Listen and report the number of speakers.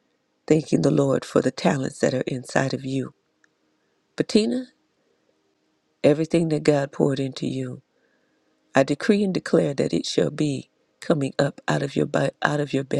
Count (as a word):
one